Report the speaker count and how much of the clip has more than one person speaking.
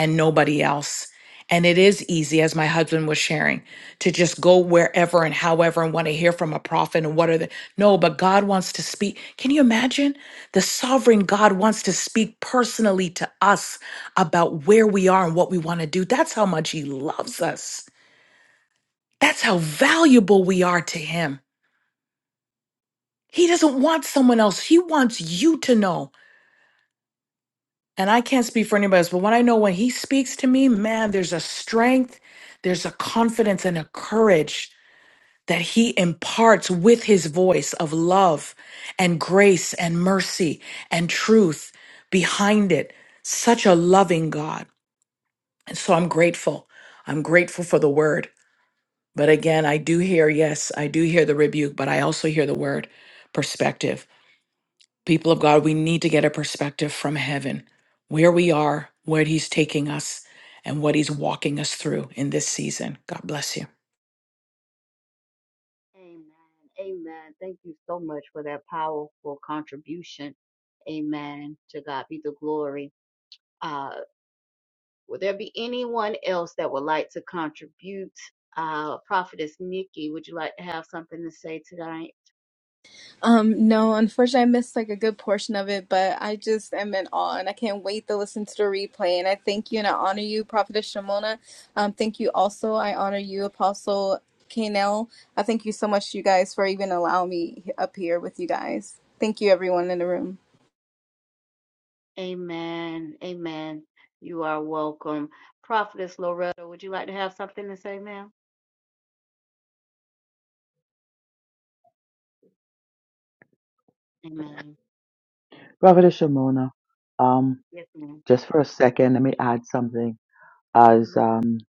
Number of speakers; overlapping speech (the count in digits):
4, no overlap